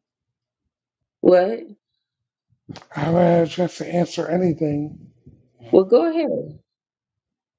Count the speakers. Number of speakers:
2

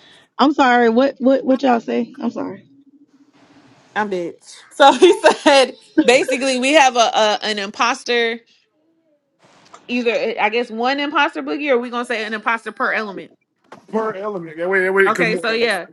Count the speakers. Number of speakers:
3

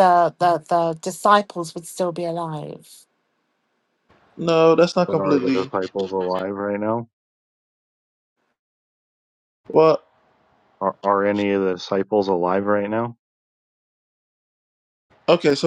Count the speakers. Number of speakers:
3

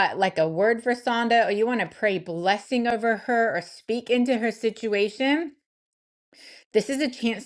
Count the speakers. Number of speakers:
1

